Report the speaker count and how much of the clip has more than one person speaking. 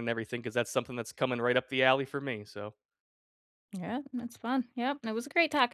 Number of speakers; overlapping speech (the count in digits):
2, no overlap